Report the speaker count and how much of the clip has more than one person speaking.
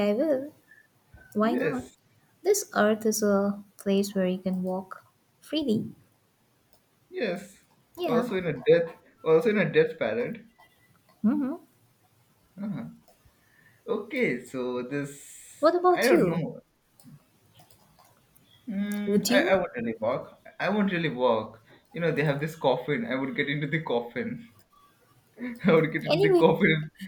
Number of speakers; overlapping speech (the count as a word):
two, about 9%